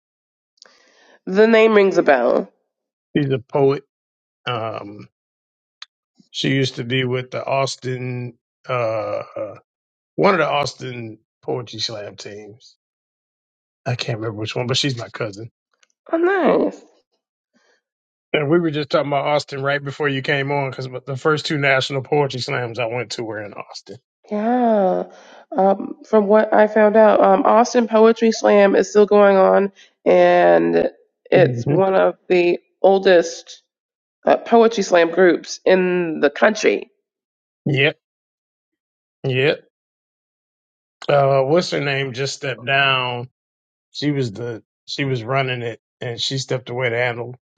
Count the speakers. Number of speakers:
2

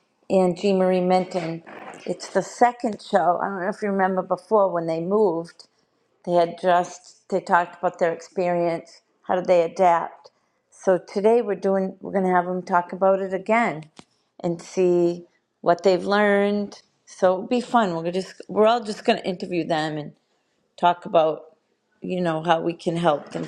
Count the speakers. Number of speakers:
1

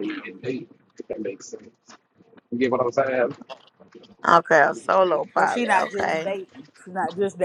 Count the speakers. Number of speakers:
3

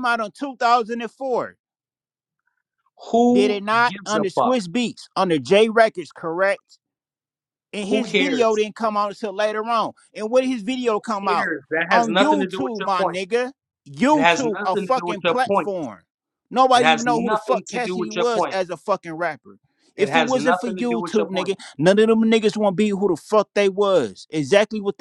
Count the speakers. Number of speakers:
2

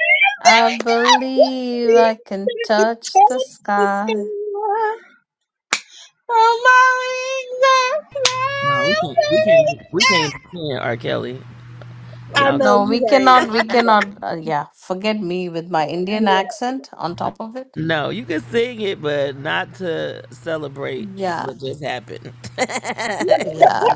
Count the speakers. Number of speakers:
3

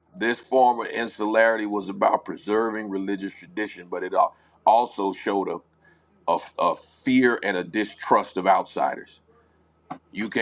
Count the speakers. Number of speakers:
1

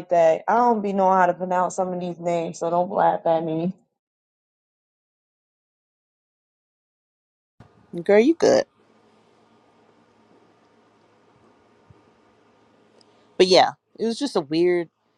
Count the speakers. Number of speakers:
2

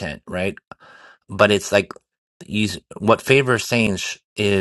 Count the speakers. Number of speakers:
1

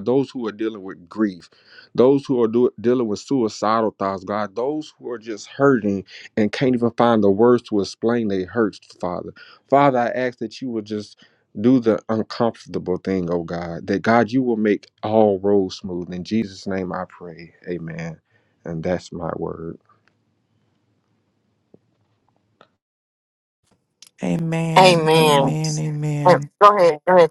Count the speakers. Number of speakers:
3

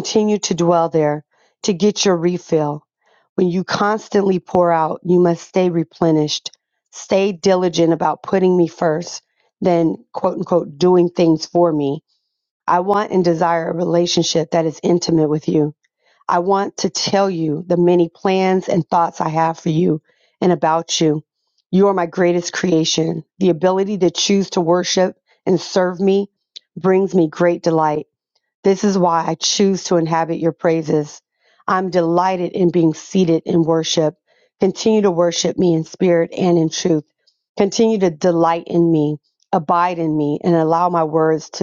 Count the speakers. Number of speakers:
1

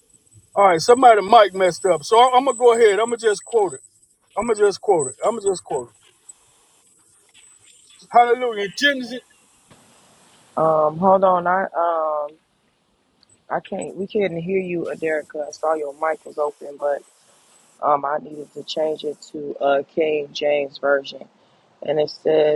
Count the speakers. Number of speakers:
2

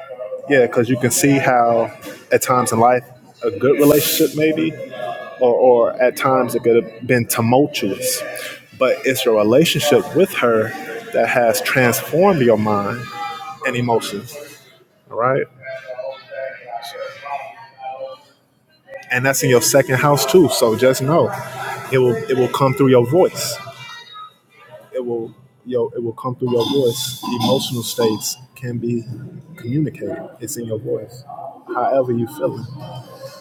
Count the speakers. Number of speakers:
1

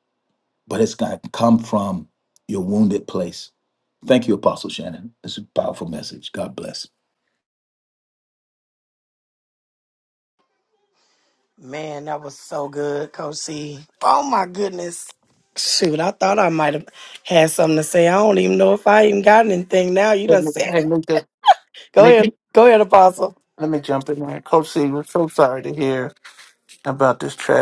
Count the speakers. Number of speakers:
3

